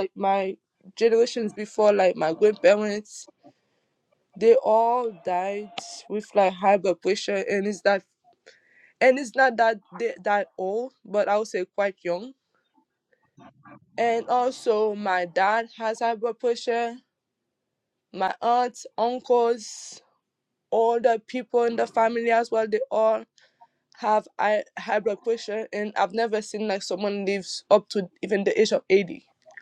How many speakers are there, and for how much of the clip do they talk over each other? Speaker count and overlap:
1, no overlap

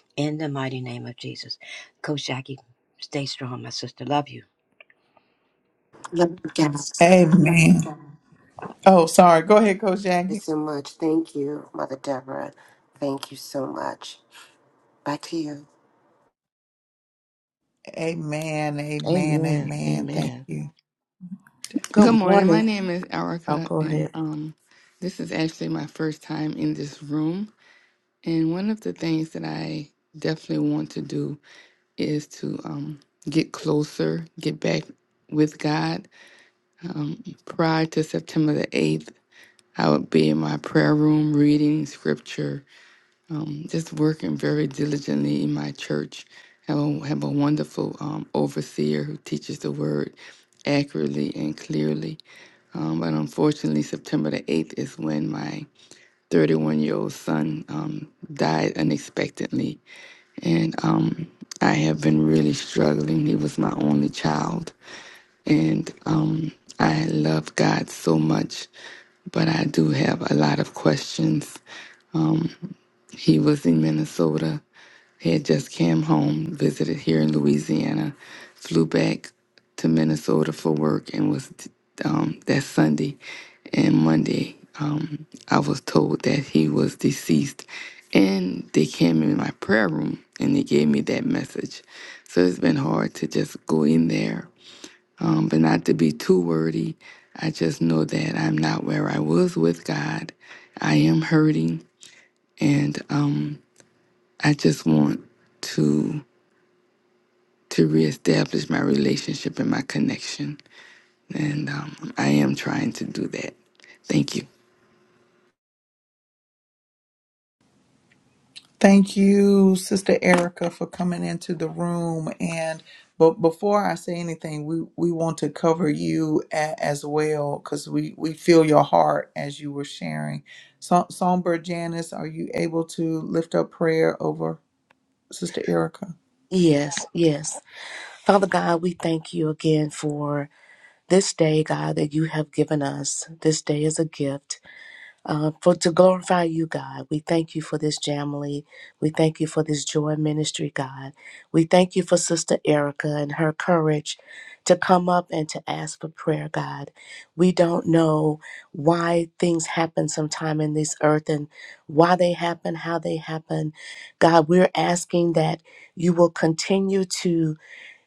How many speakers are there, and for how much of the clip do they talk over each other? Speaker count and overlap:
5, about 2%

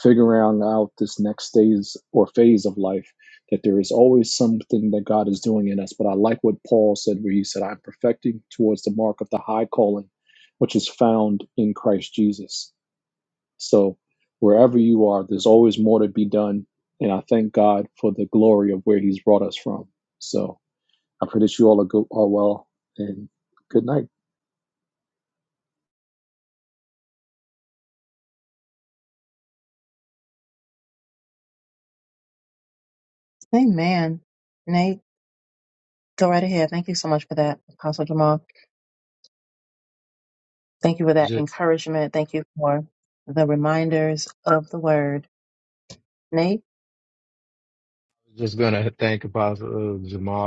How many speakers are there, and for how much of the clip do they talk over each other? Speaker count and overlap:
3, under 1%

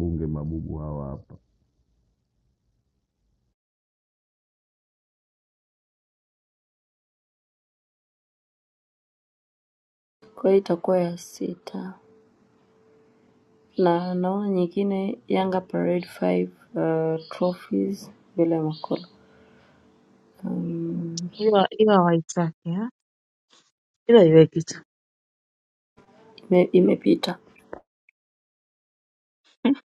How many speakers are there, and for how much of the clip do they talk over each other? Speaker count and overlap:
3, no overlap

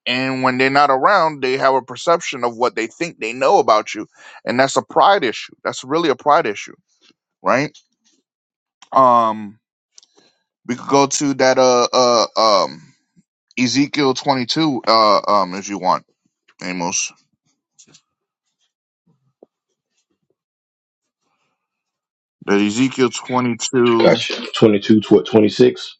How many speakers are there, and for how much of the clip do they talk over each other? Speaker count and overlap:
2, about 1%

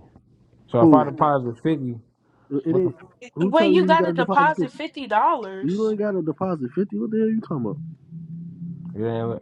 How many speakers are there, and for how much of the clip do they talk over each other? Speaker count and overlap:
3, about 20%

